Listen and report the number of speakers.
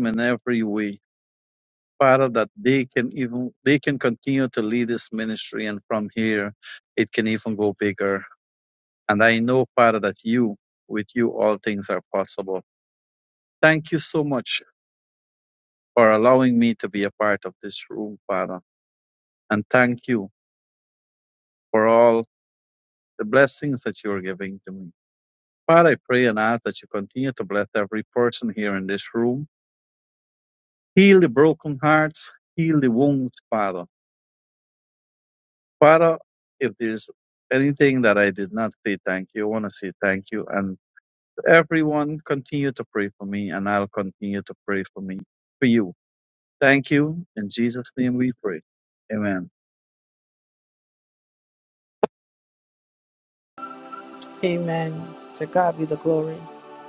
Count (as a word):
two